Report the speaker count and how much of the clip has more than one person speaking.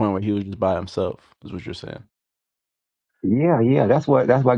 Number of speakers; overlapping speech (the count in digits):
2, no overlap